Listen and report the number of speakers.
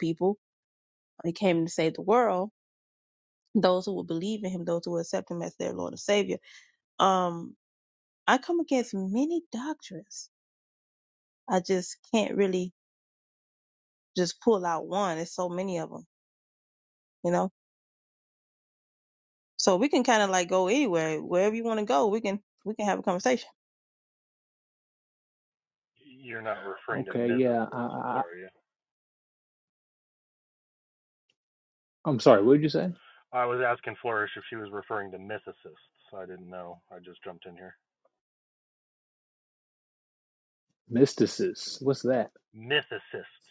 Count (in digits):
3